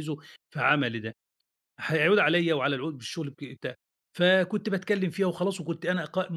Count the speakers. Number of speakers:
1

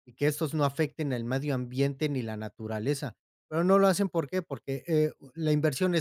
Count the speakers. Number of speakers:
1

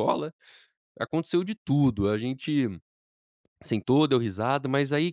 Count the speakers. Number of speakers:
1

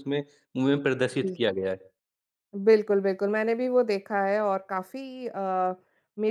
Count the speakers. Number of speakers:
2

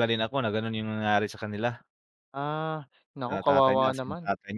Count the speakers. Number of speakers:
2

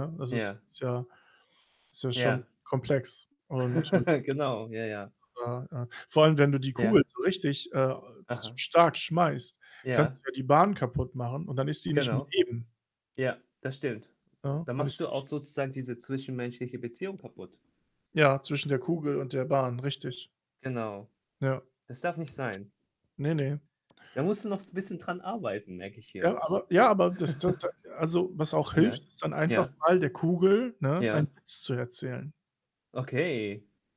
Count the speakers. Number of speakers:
2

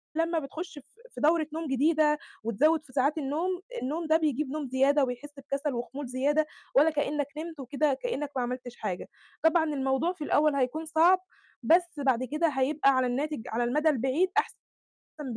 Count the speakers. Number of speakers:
1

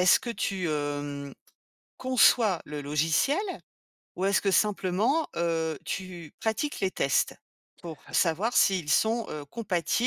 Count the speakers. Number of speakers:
1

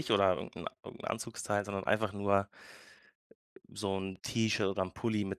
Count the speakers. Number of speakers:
1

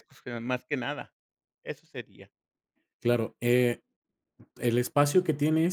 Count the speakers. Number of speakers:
2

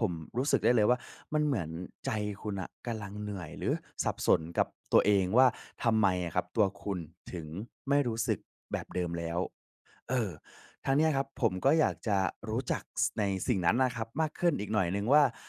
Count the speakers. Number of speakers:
1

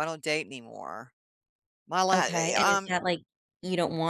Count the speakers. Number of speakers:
2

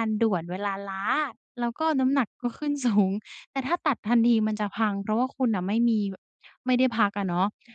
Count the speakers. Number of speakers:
1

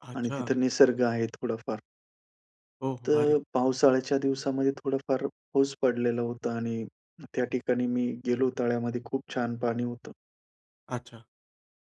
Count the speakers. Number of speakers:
2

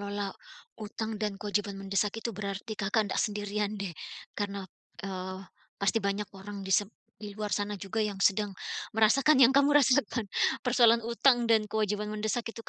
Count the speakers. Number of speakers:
1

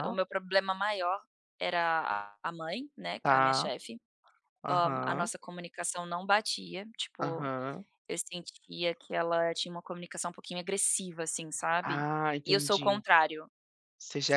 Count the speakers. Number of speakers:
2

